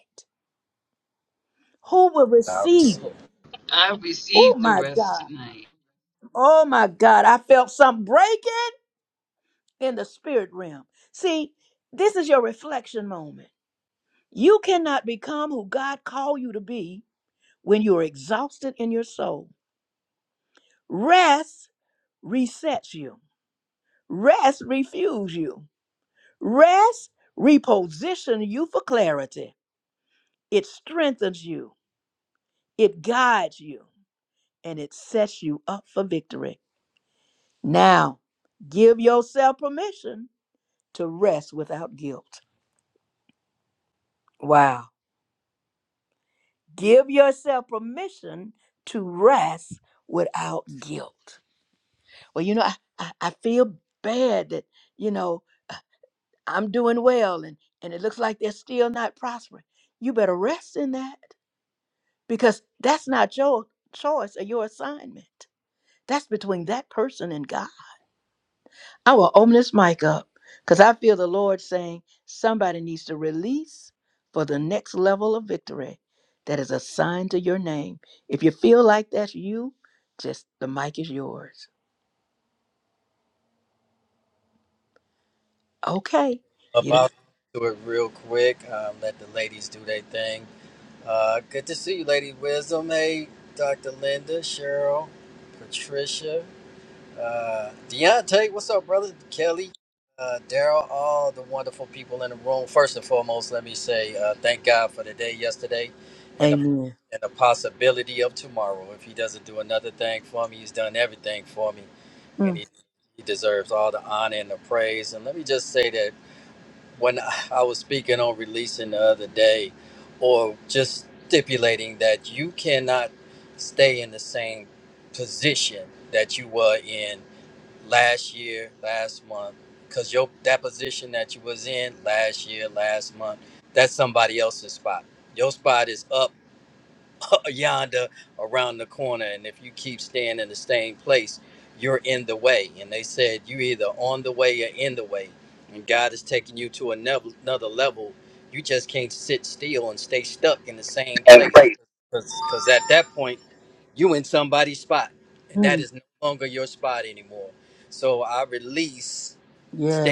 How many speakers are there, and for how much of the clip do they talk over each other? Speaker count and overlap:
3, about 2%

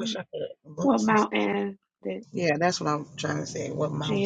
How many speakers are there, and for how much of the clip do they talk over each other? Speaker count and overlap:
2, about 10%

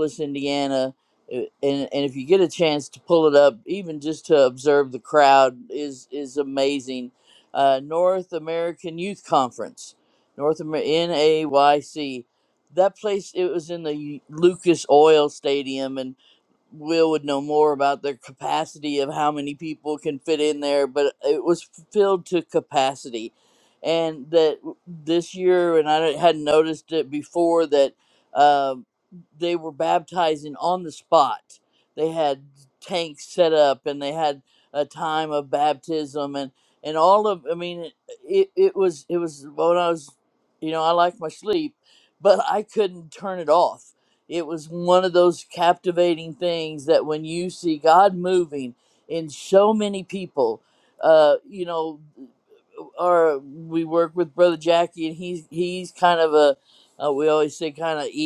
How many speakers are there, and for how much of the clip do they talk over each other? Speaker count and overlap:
1, no overlap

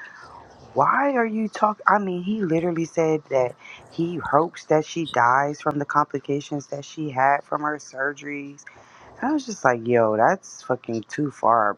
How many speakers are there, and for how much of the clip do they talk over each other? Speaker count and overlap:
1, no overlap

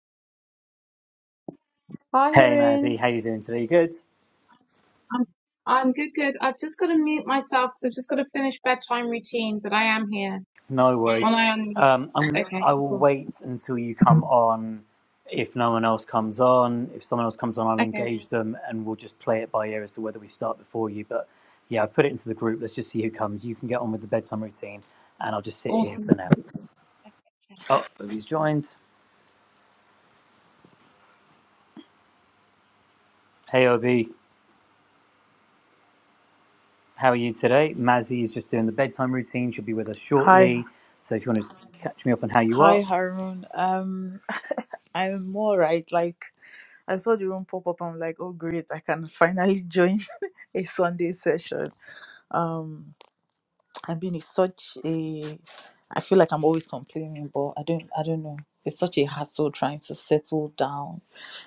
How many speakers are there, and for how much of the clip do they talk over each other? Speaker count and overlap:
3, about 5%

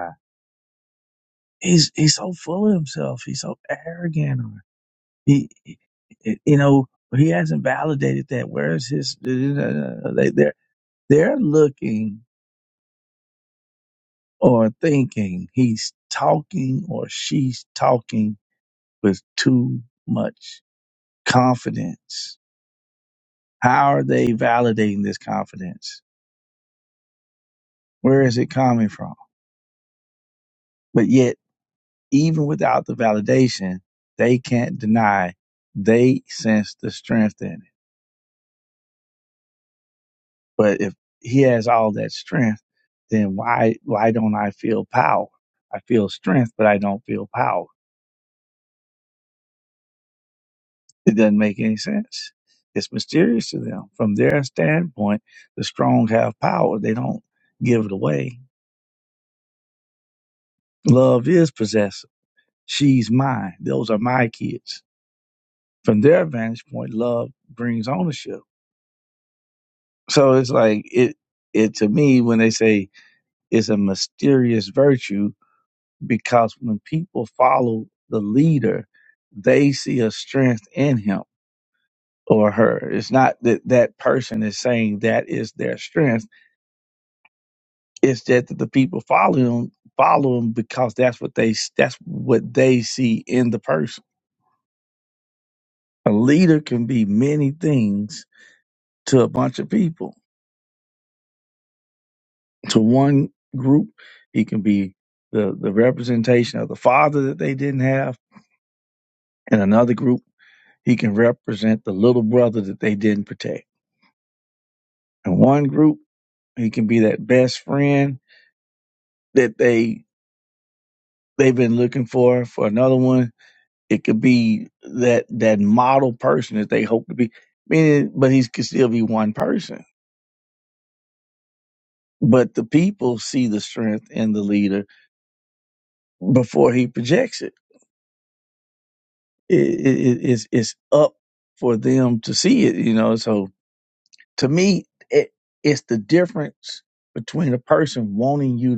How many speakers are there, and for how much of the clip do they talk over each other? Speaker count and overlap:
1, no overlap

